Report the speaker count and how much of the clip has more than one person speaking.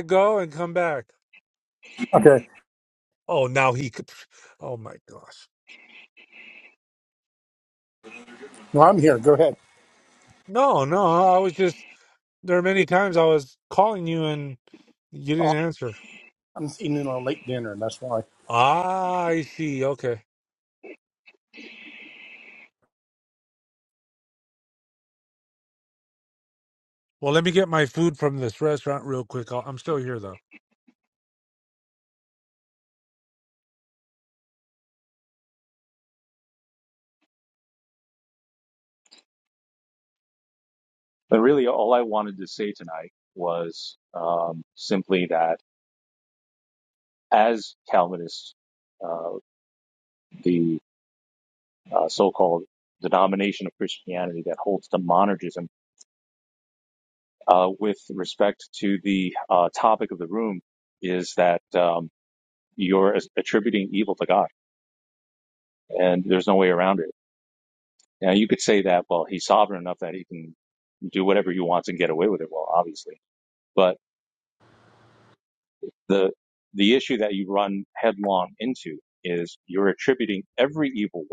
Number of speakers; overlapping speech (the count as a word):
three, under 1%